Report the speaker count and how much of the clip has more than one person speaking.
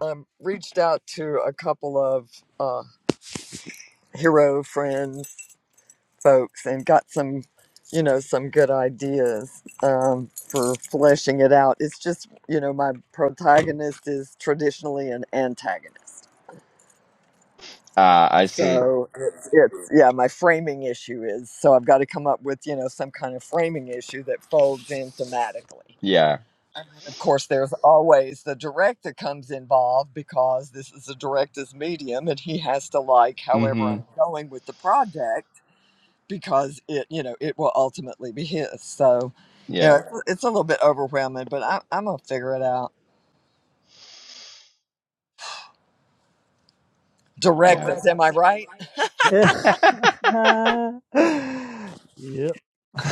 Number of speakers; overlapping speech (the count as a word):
three, about 2%